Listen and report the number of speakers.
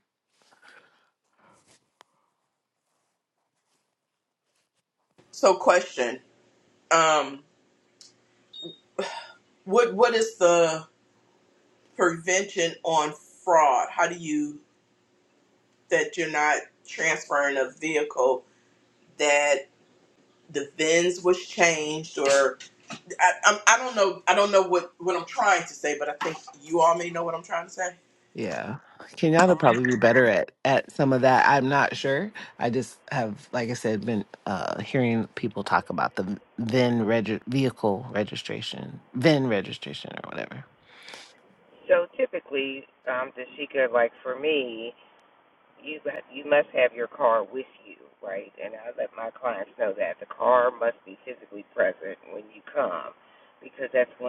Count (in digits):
3